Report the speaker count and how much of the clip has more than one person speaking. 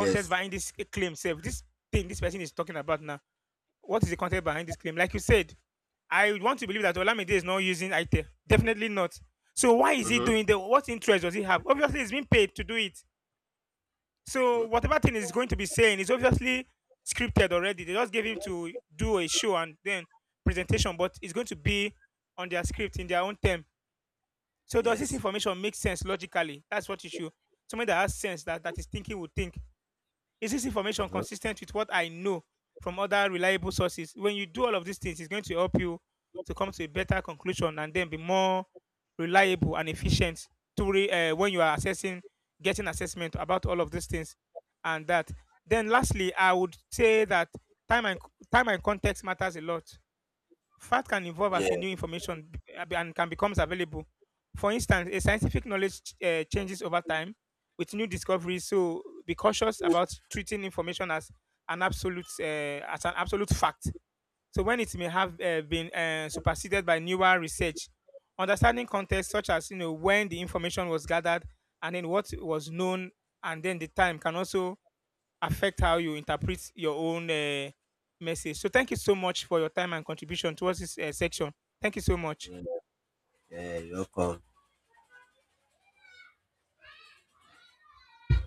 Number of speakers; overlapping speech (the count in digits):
2, about 2%